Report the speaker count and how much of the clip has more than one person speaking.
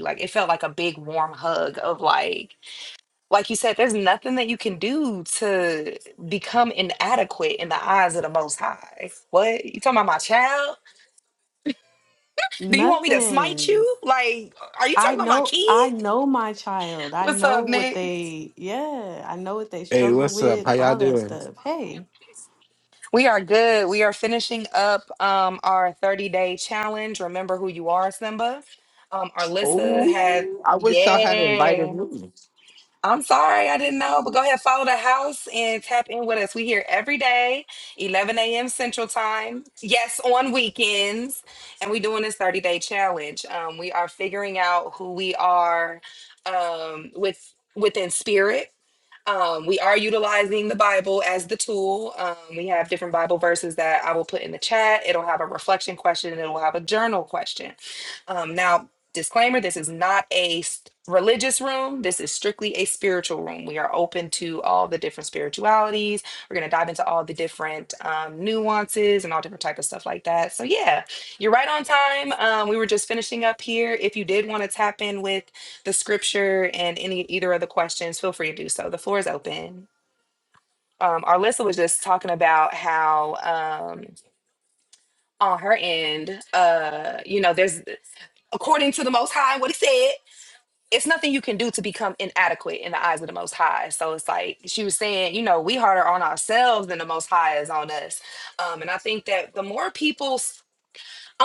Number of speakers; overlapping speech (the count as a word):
three, about 6%